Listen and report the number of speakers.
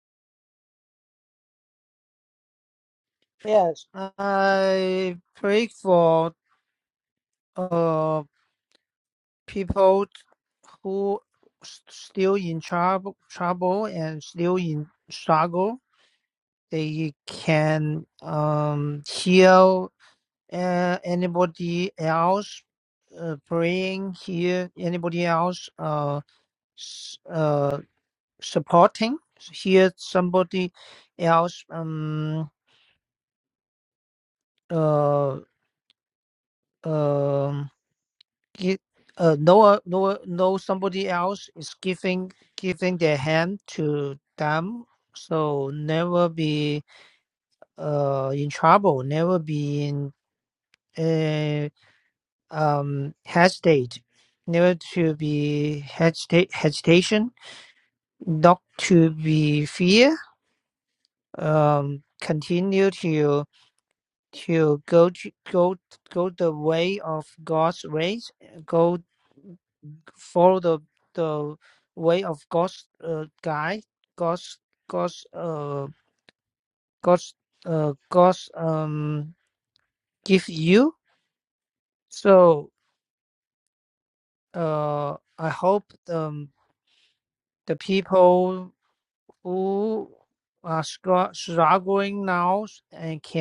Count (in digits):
1